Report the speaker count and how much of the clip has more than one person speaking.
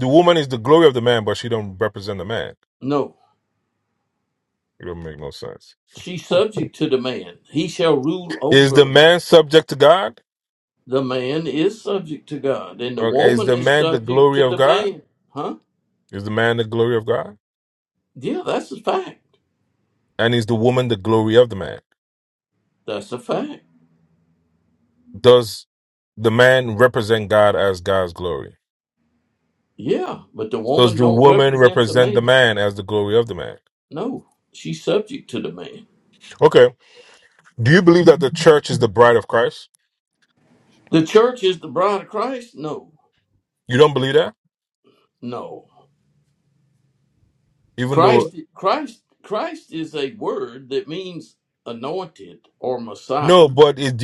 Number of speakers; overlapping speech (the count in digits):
2, about 8%